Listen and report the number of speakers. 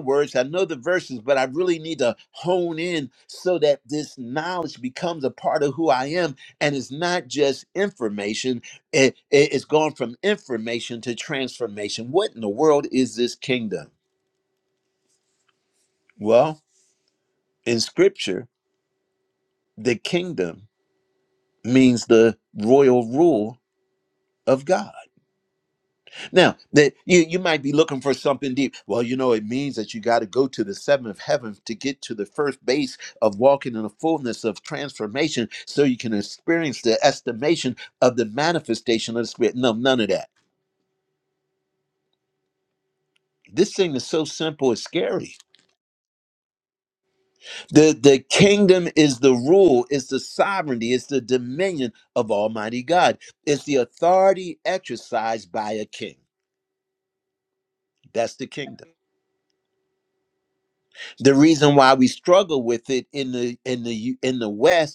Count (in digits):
1